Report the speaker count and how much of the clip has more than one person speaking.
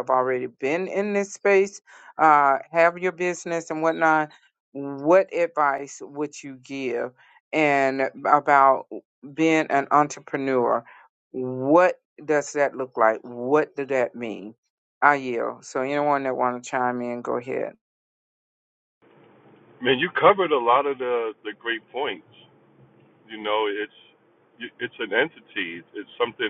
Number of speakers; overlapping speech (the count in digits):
2, no overlap